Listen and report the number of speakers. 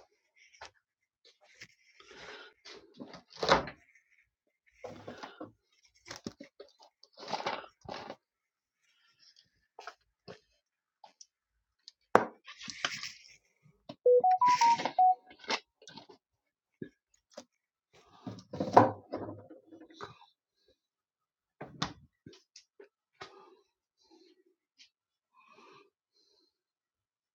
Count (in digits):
0